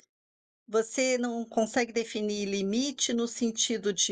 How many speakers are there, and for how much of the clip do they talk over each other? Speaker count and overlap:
1, no overlap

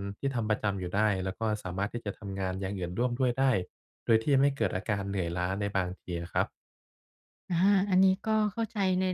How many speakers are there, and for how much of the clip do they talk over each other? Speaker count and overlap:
2, no overlap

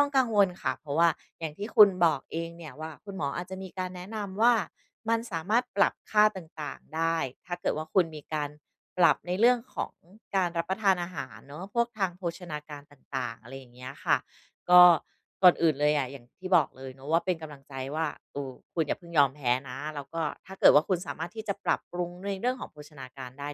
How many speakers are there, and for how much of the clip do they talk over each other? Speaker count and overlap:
1, no overlap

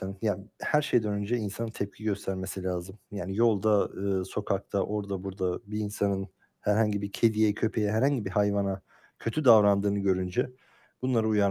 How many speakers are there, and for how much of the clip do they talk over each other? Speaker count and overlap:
1, no overlap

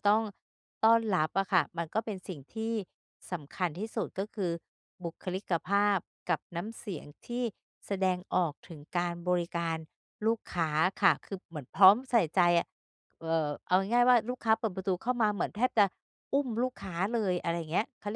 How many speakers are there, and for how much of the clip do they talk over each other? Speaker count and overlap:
1, no overlap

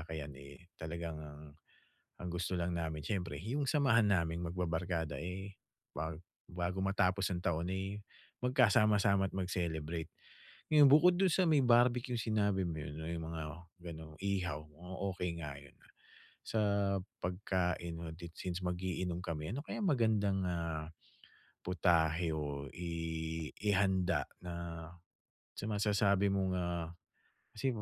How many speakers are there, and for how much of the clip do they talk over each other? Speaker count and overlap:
1, no overlap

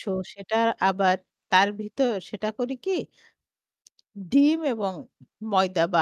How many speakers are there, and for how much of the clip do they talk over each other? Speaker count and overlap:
1, no overlap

